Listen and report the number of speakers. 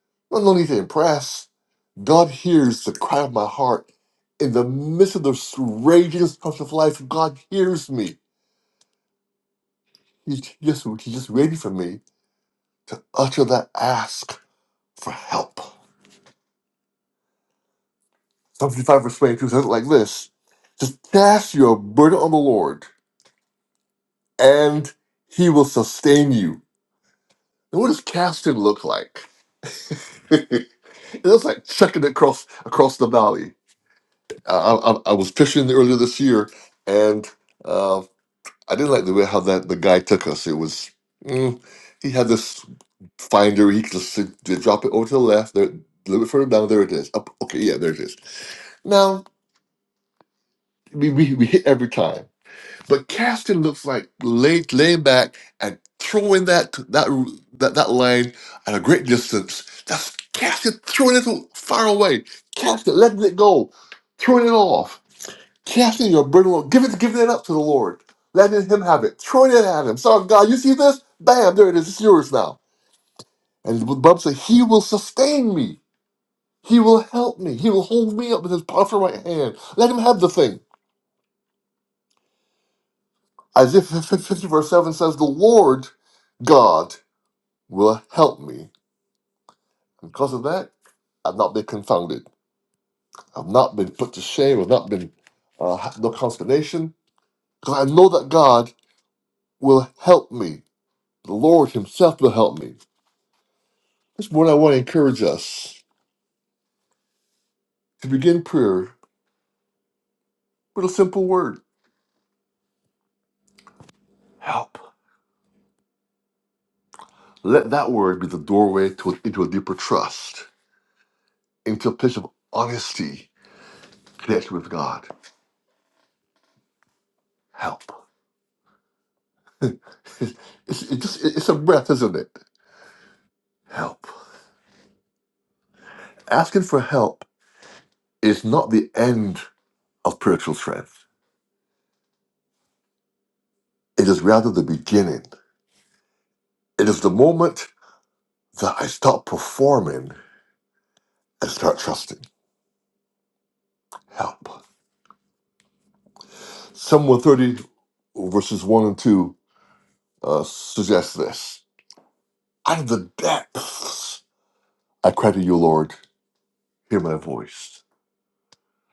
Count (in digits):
1